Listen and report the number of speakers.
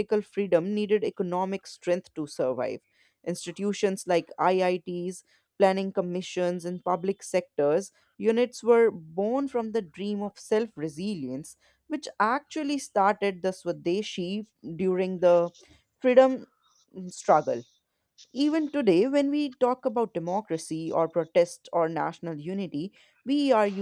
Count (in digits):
1